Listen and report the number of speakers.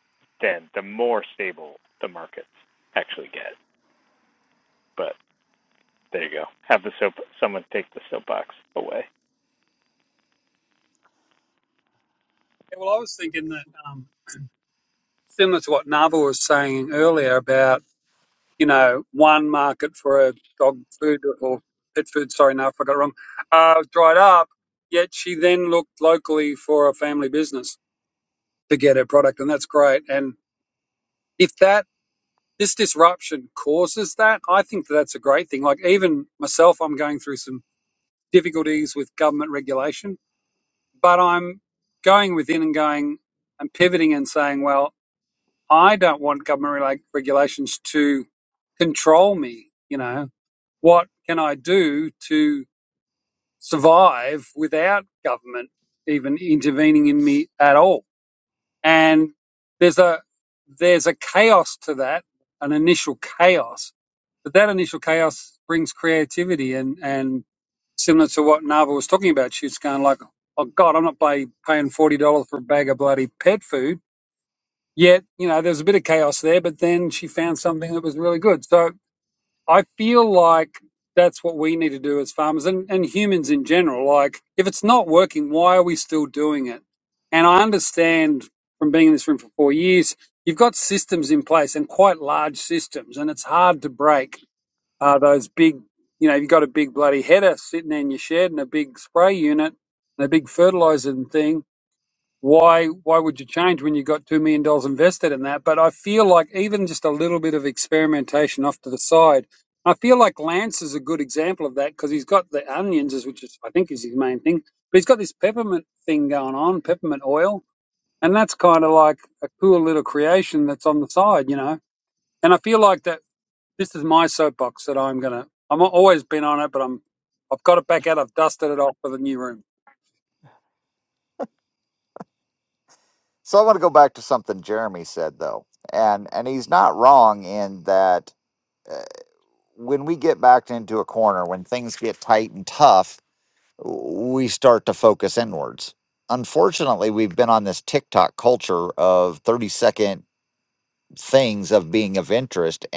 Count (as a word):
three